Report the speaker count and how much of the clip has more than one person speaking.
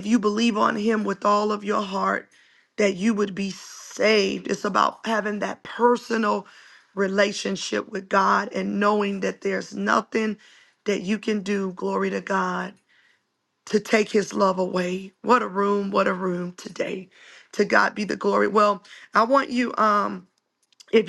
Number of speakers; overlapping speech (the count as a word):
one, no overlap